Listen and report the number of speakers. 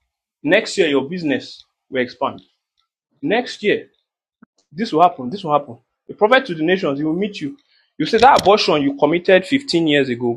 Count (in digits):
1